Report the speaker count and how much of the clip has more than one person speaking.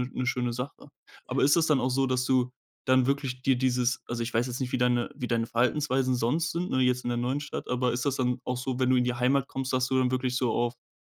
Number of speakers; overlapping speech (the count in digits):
1, no overlap